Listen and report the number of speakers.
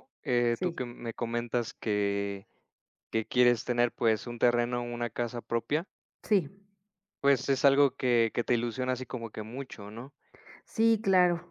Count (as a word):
two